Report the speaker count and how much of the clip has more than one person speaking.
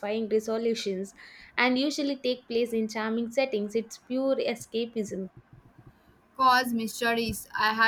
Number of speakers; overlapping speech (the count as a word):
two, no overlap